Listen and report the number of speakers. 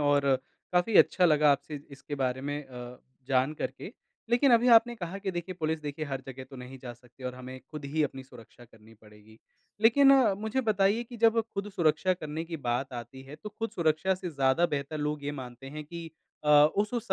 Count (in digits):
1